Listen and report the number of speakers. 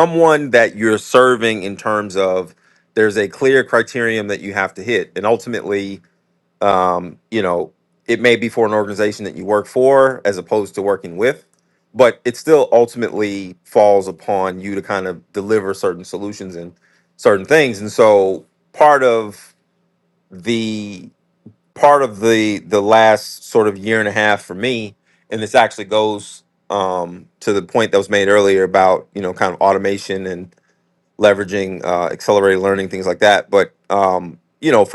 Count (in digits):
1